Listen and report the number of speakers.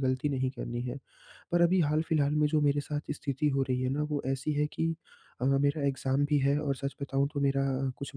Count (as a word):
one